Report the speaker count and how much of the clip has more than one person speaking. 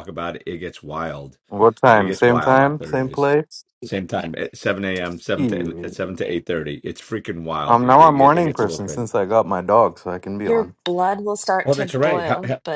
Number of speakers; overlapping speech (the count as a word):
three, about 34%